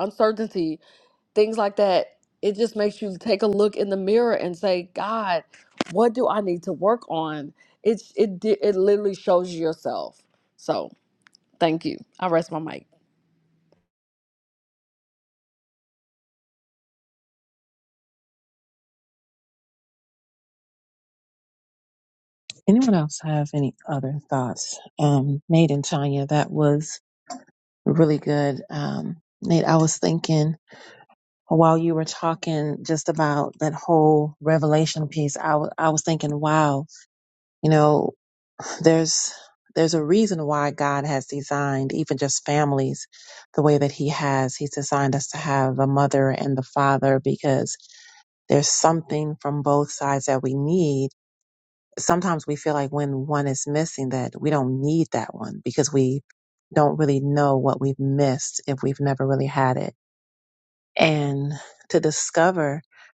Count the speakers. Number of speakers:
two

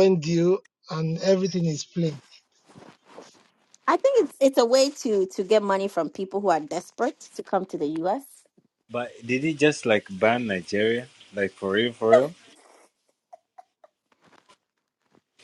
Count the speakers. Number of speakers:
three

